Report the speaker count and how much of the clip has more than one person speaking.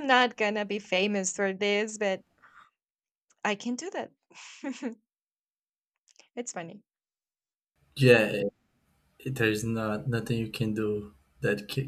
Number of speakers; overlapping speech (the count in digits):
2, no overlap